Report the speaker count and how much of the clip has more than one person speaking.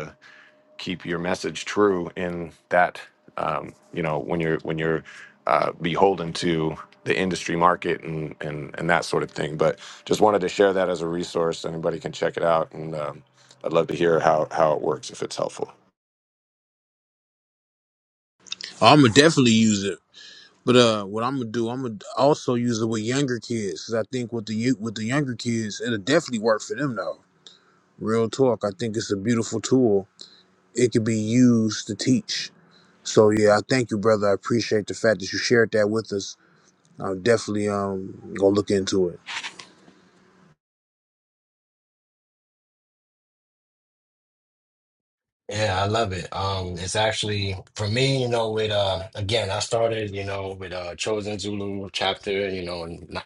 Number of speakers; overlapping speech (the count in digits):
3, no overlap